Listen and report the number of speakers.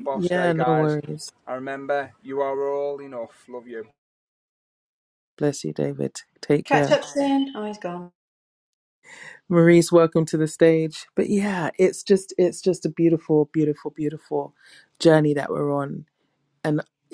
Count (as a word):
three